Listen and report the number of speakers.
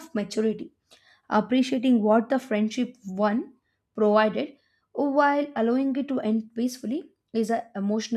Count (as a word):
one